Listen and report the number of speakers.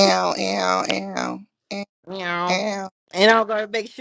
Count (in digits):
2